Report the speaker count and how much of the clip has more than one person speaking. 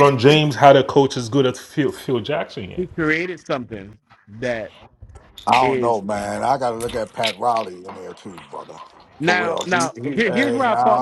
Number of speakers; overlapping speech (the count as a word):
three, about 19%